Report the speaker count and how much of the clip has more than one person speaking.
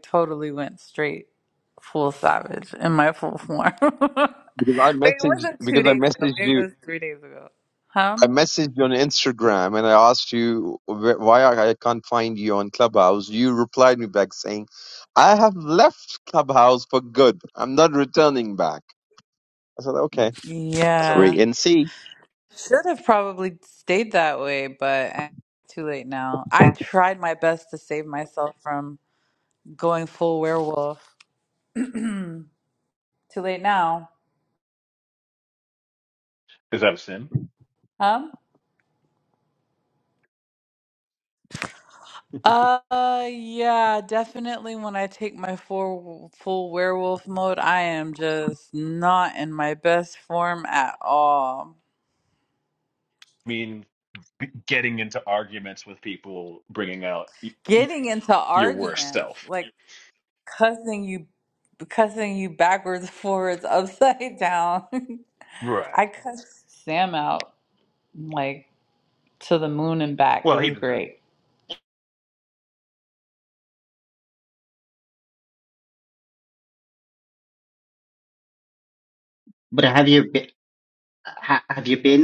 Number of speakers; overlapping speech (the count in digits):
4, about 4%